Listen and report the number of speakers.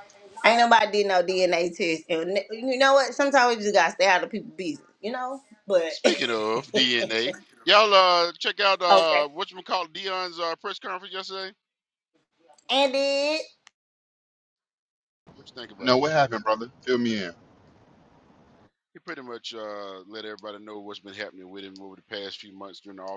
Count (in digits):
3